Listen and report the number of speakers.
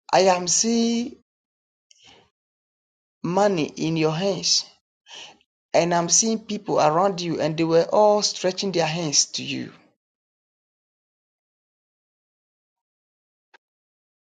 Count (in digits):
1